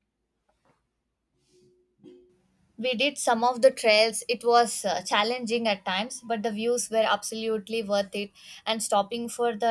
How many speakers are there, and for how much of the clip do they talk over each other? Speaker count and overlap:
one, no overlap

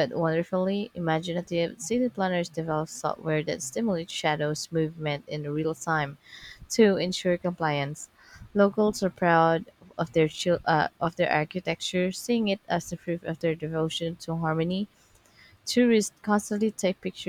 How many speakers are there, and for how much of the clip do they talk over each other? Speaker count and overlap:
one, no overlap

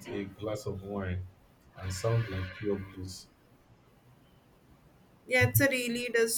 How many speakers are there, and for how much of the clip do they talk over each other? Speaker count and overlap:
two, no overlap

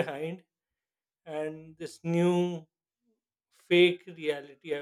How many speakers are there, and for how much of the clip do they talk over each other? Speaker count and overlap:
one, no overlap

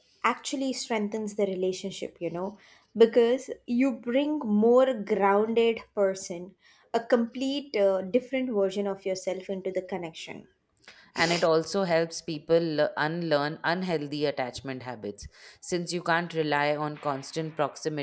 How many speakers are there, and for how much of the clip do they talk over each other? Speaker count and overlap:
two, no overlap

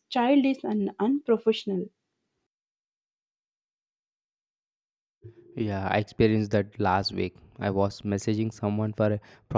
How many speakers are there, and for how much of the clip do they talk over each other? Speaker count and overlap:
two, no overlap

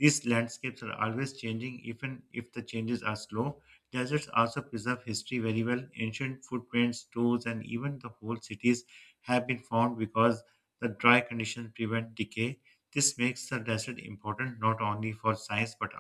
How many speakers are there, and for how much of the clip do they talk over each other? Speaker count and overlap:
one, no overlap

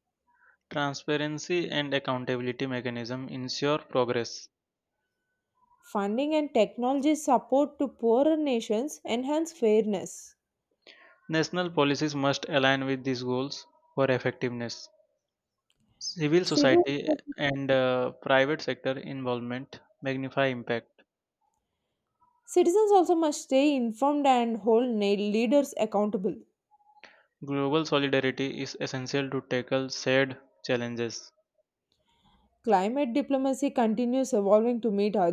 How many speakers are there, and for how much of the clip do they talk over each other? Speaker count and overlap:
two, about 1%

